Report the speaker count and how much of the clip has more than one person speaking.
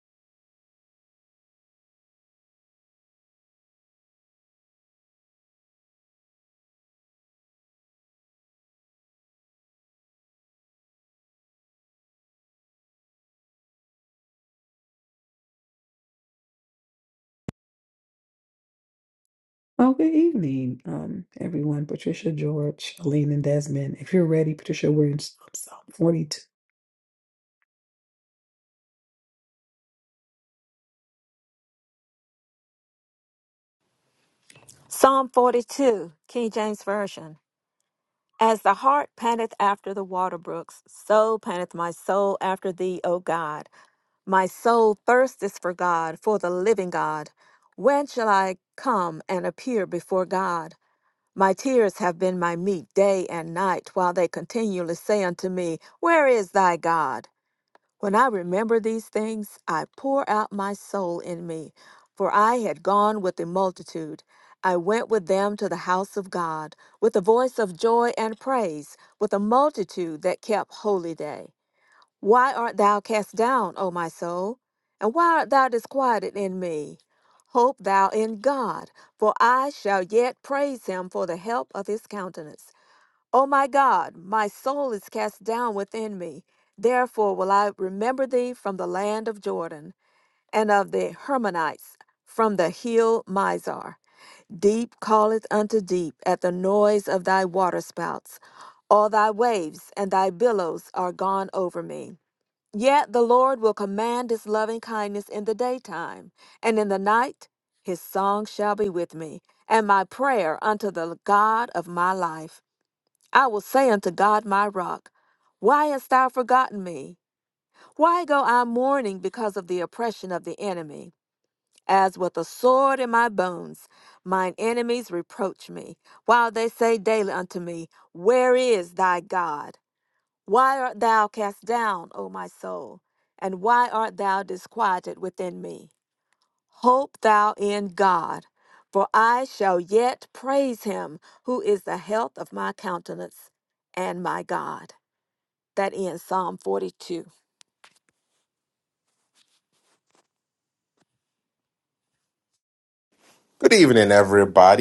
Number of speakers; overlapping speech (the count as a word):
three, no overlap